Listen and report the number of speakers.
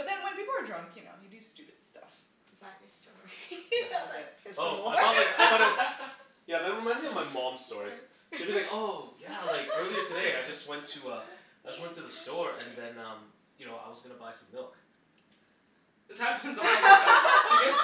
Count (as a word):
four